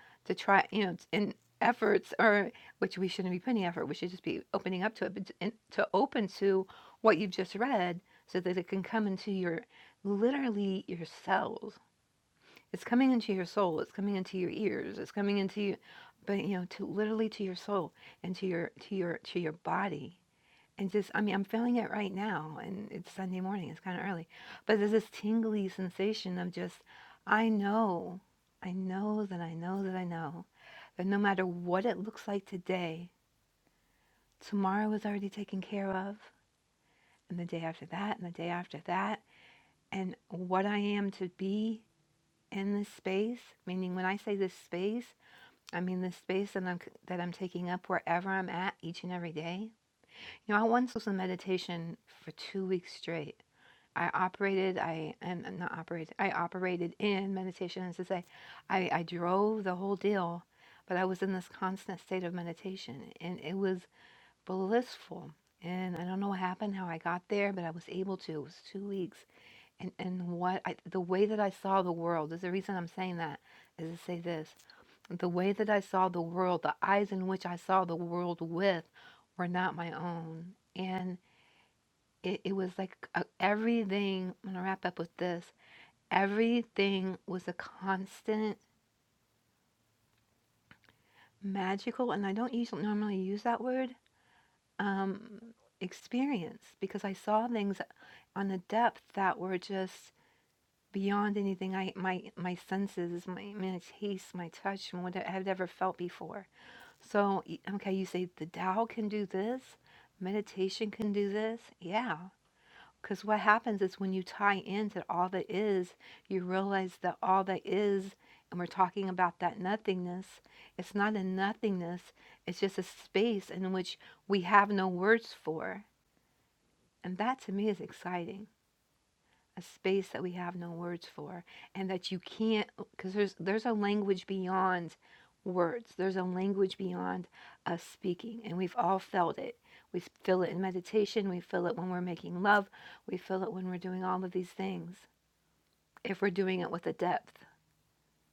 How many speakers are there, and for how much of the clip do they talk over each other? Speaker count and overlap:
one, no overlap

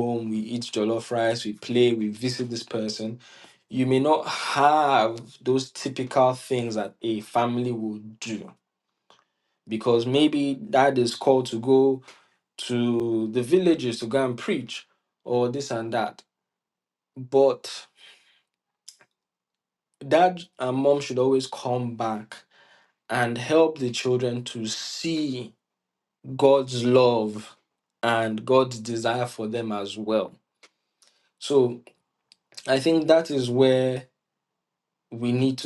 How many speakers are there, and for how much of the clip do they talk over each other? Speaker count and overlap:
one, no overlap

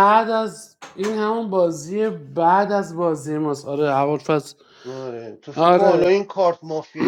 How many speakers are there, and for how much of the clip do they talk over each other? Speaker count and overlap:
two, about 11%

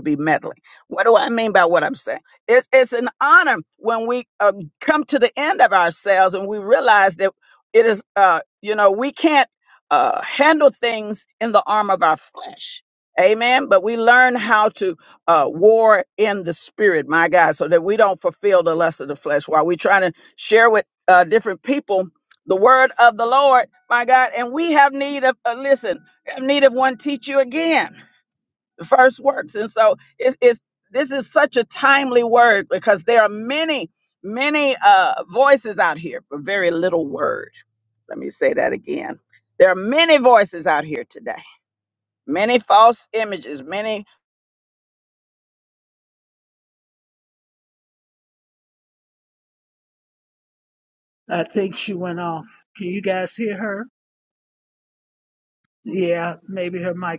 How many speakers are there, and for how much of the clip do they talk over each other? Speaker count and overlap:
two, no overlap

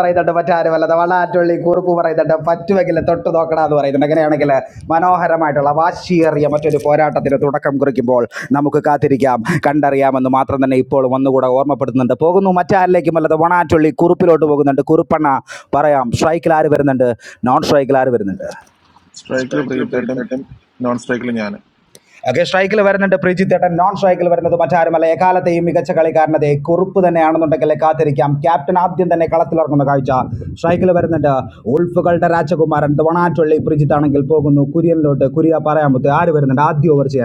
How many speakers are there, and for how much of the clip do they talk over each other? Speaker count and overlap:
two, no overlap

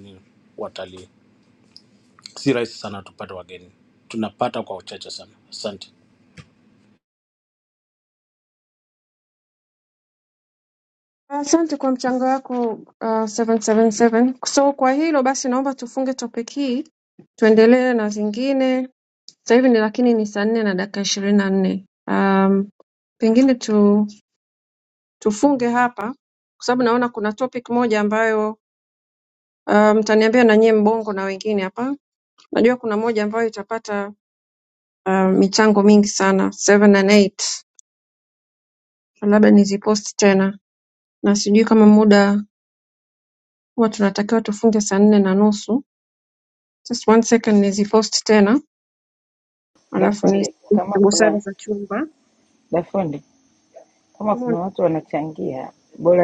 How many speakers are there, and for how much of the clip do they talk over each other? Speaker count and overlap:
three, about 2%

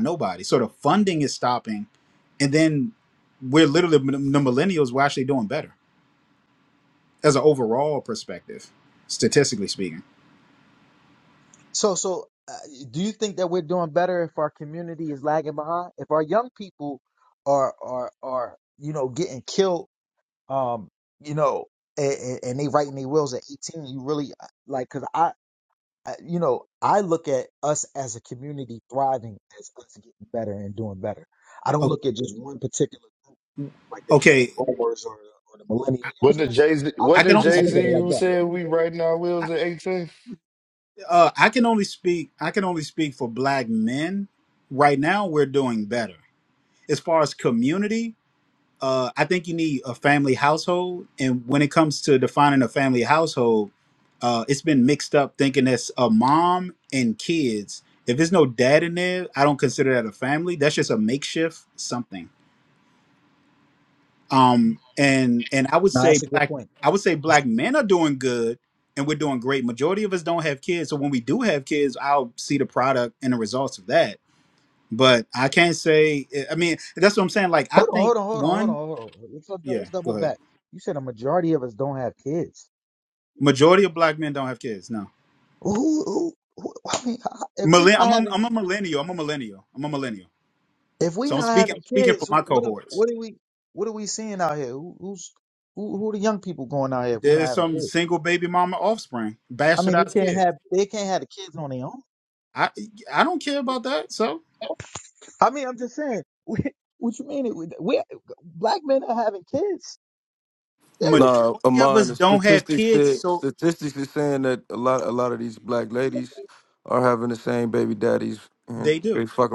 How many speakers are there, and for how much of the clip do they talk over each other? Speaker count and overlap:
four, about 9%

